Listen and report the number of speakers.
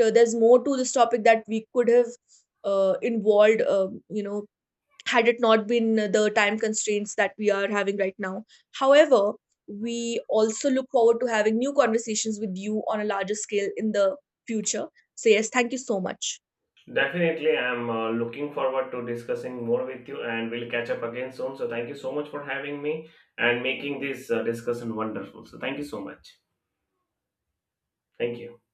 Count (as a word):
two